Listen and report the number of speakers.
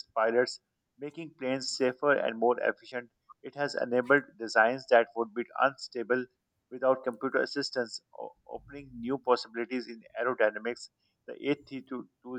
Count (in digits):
1